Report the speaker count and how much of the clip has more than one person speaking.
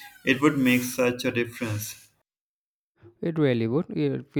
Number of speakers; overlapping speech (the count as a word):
two, no overlap